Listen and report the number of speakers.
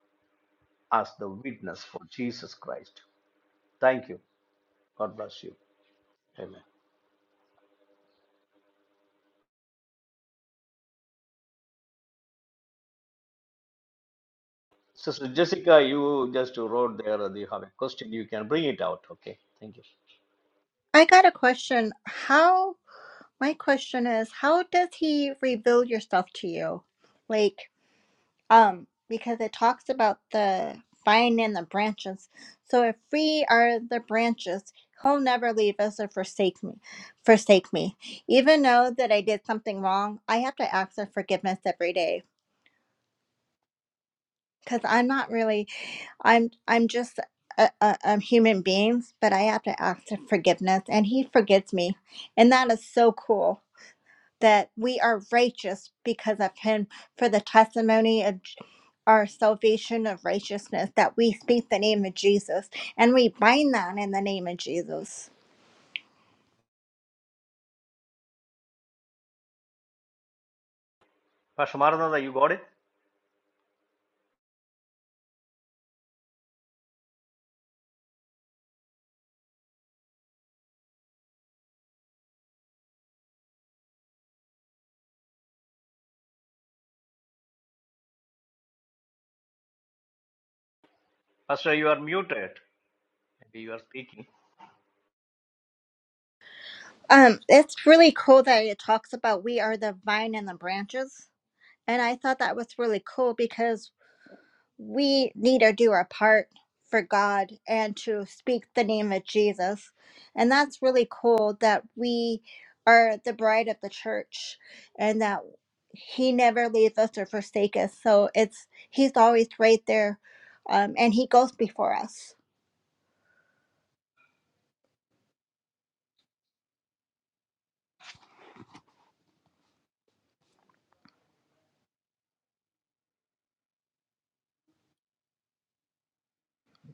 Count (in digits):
2